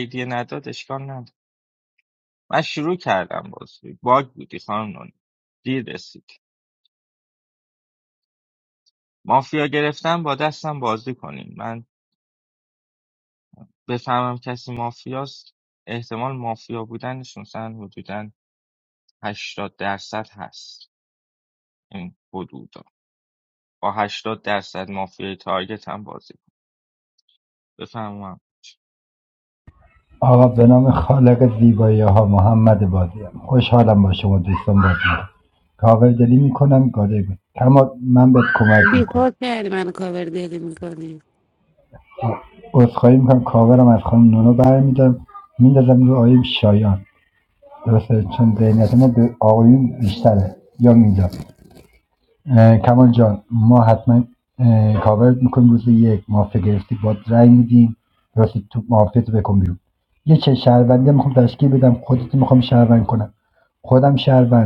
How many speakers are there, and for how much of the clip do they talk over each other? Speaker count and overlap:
3, under 1%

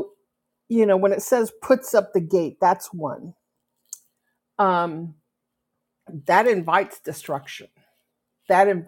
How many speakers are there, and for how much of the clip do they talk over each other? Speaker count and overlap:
1, no overlap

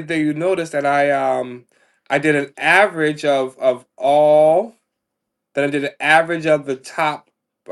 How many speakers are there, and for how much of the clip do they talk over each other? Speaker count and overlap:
1, no overlap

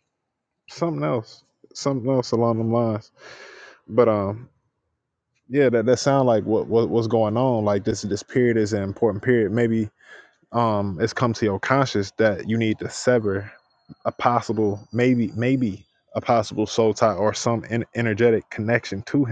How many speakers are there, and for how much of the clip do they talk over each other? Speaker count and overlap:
1, no overlap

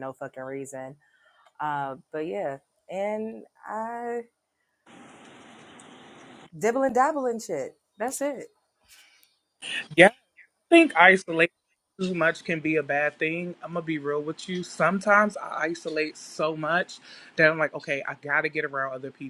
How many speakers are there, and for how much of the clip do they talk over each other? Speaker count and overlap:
2, no overlap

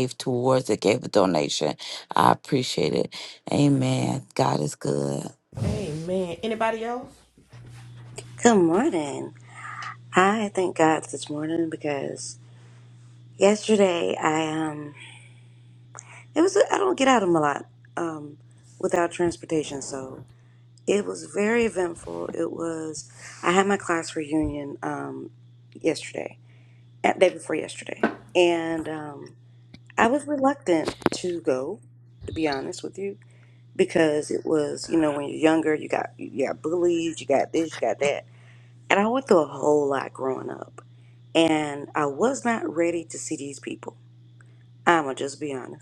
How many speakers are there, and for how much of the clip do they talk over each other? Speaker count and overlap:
3, no overlap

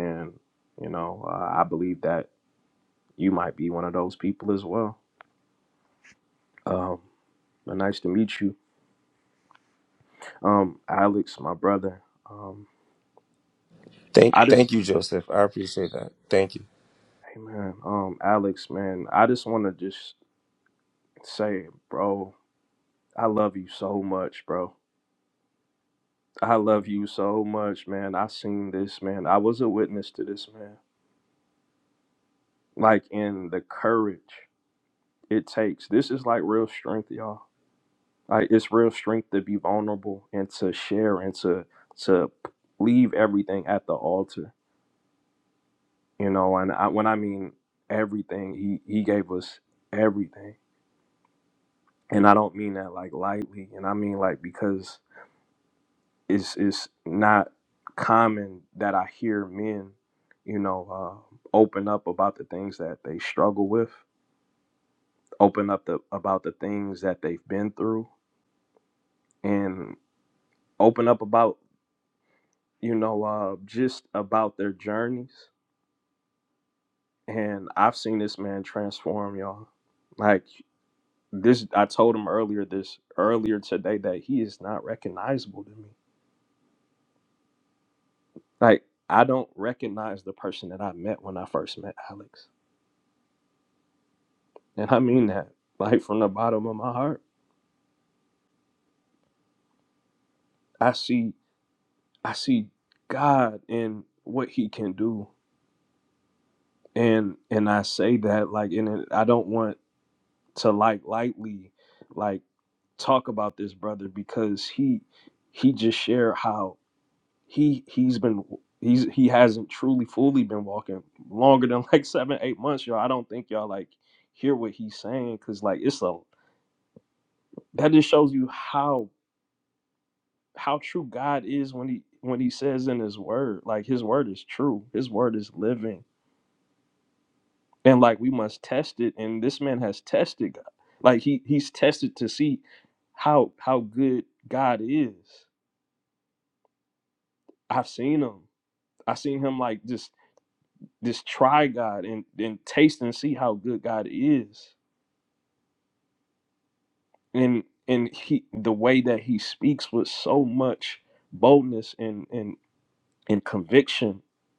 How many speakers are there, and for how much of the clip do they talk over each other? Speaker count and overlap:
2, under 1%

